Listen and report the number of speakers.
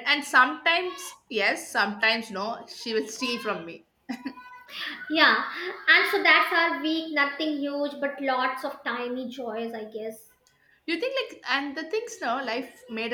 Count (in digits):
2